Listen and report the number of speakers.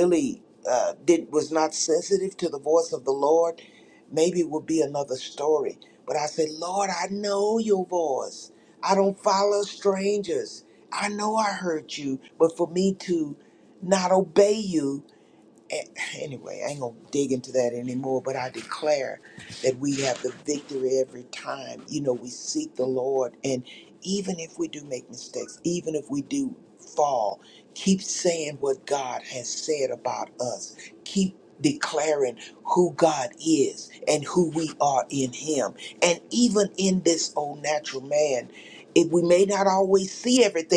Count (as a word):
one